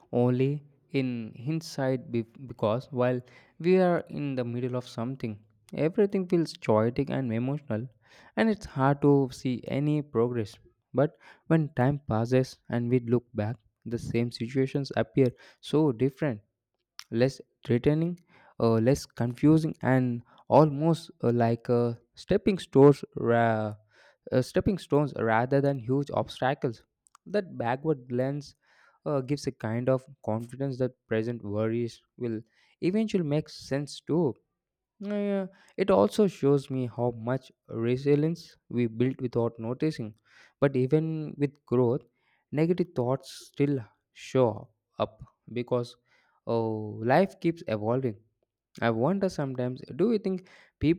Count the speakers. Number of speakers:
1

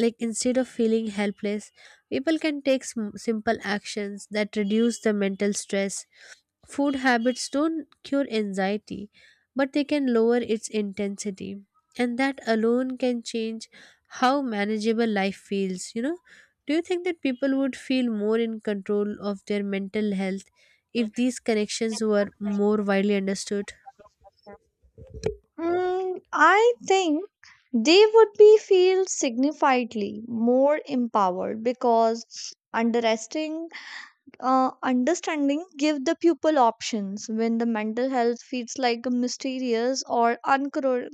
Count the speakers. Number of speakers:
2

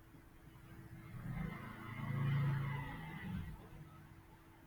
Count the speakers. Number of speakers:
0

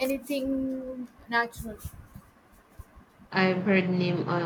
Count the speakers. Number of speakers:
2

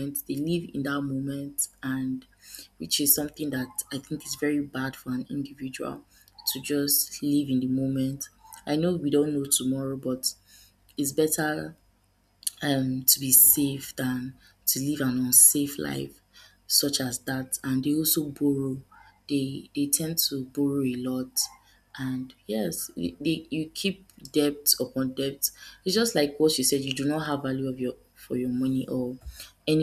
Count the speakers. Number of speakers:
1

